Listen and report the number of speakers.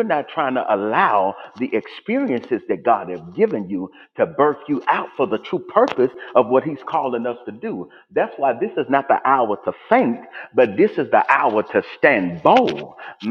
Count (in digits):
1